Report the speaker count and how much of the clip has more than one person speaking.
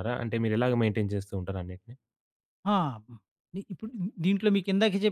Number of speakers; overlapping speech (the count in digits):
2, no overlap